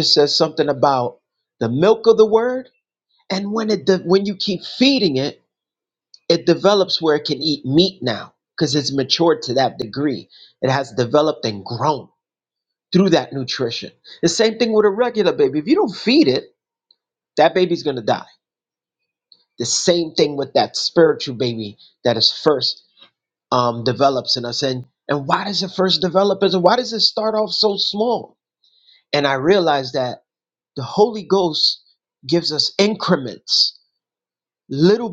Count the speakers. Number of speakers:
one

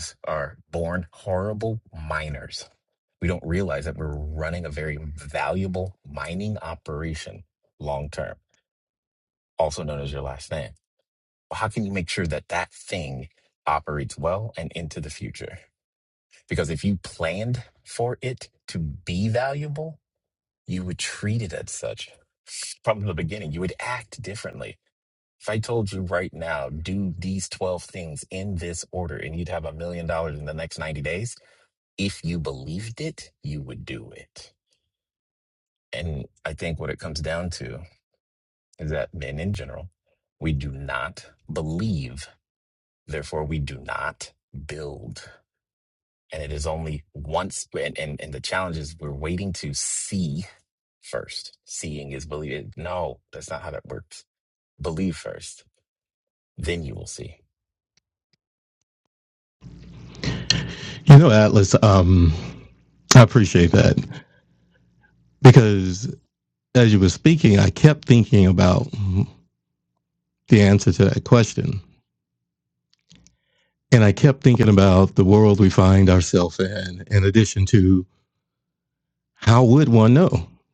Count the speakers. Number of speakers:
two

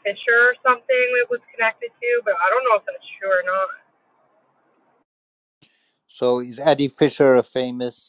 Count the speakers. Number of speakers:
two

